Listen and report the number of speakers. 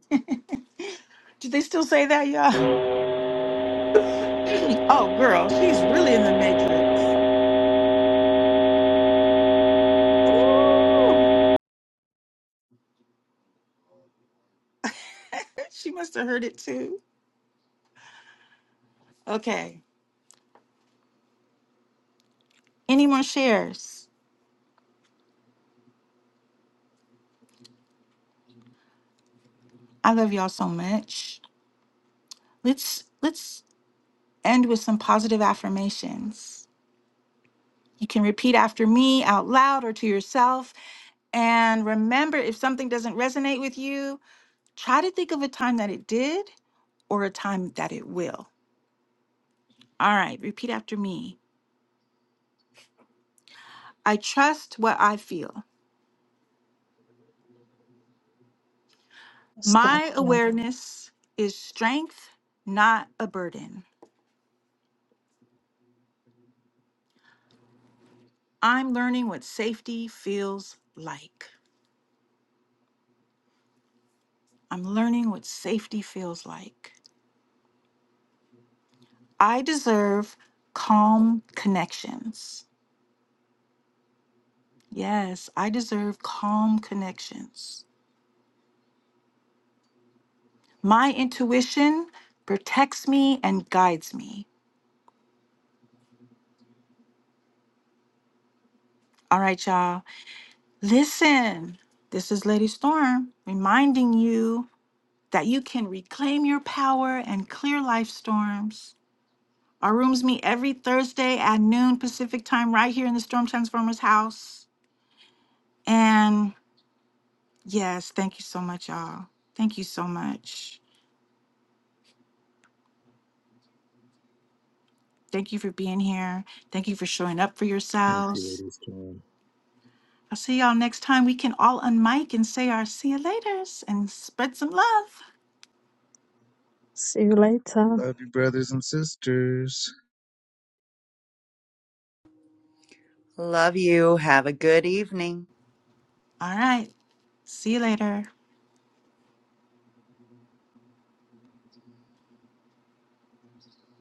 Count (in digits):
5